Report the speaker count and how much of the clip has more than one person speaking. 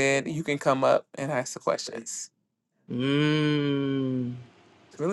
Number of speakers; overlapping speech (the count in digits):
2, no overlap